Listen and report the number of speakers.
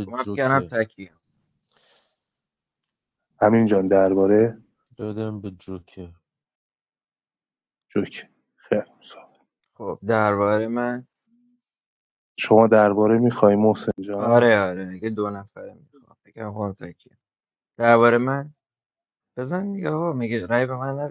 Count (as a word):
three